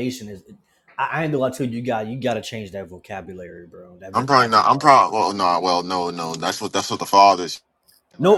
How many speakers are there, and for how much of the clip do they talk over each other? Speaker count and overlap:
2, about 11%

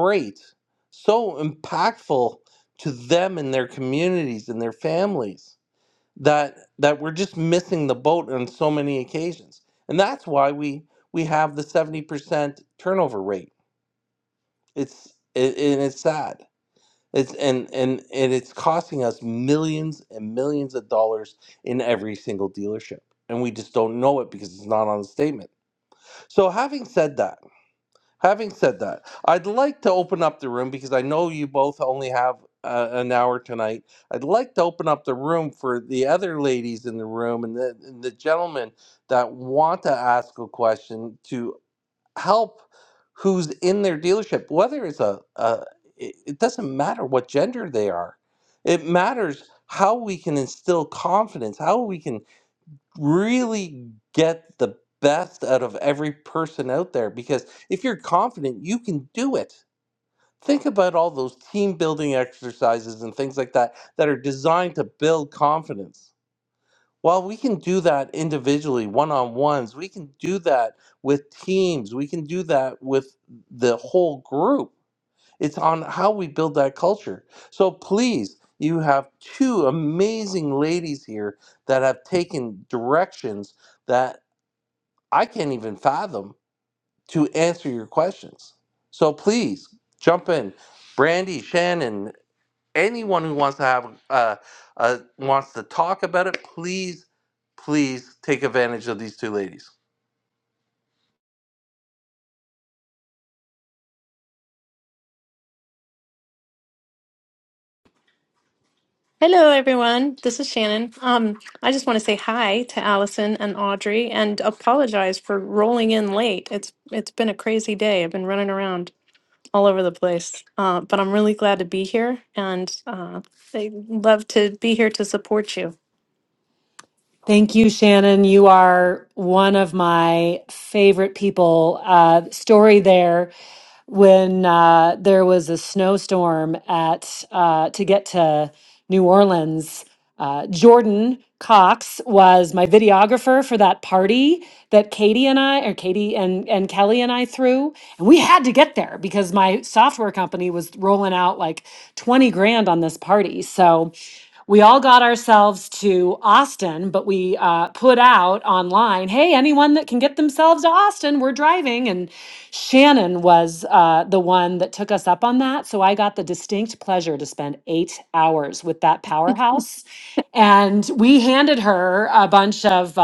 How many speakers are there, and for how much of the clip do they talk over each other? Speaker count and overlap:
3, no overlap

